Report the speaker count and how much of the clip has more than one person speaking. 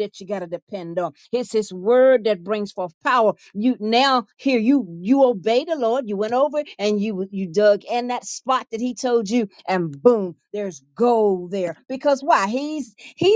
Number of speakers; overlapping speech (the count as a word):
one, no overlap